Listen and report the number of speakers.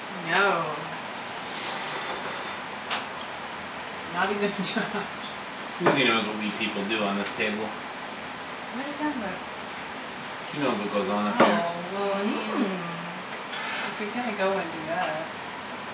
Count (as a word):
three